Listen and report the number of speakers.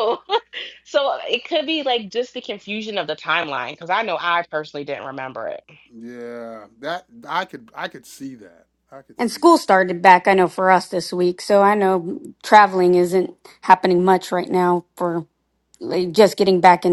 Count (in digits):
3